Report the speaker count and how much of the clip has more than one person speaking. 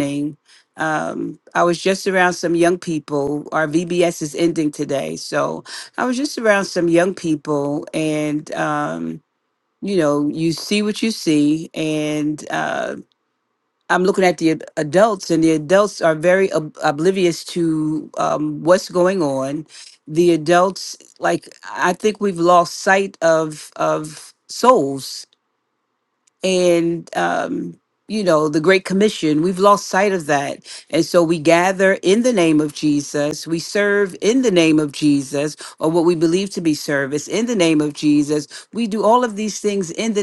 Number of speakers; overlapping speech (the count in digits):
1, no overlap